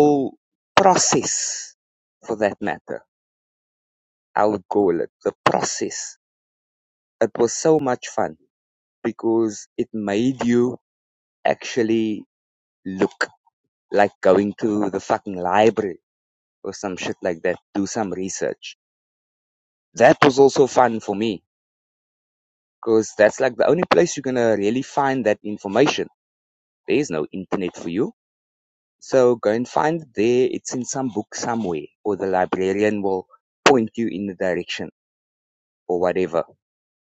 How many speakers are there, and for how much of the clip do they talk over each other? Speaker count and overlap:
one, no overlap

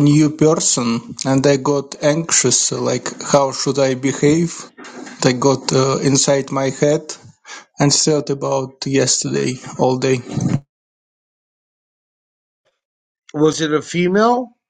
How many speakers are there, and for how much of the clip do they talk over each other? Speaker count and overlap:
two, no overlap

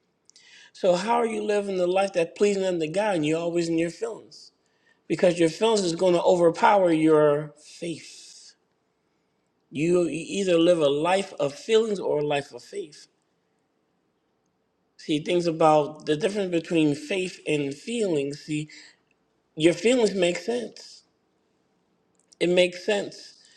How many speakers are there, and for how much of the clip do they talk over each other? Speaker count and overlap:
one, no overlap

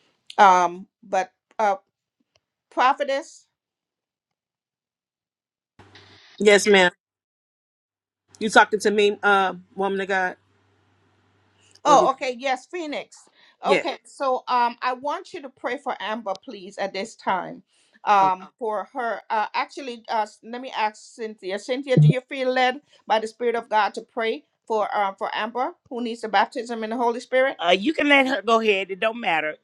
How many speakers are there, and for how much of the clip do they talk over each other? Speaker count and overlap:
three, about 2%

